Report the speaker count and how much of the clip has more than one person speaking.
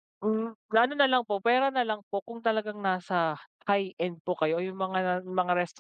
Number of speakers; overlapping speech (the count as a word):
one, no overlap